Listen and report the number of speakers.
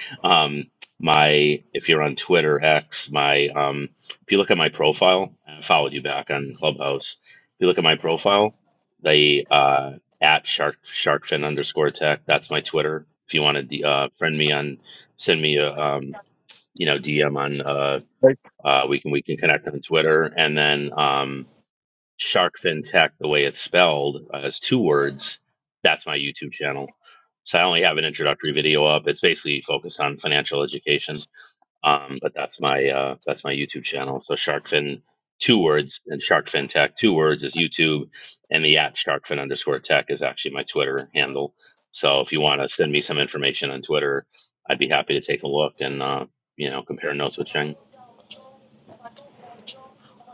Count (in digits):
1